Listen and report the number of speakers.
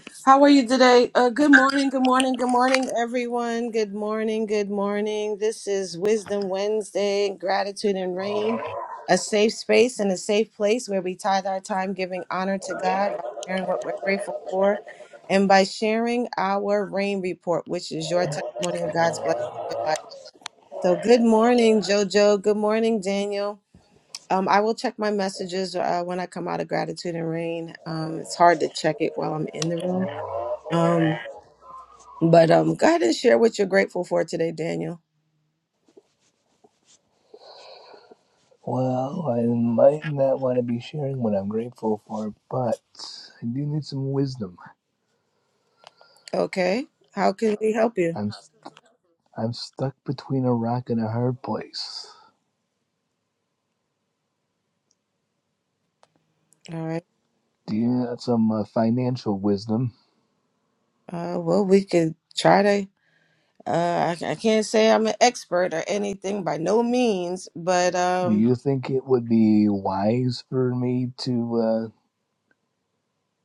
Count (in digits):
2